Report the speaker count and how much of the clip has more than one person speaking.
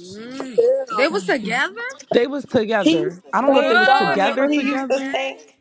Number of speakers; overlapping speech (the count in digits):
3, about 60%